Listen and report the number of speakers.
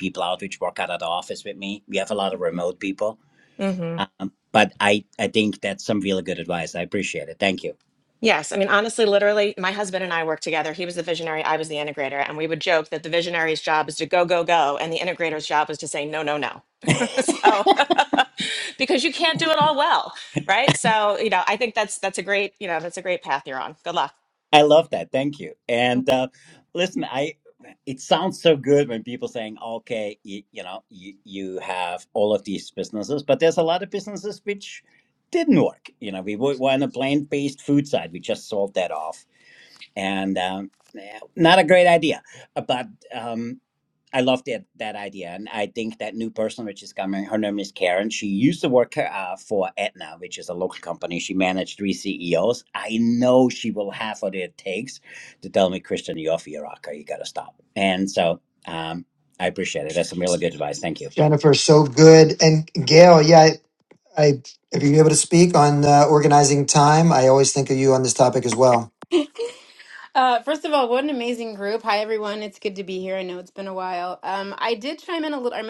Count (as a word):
four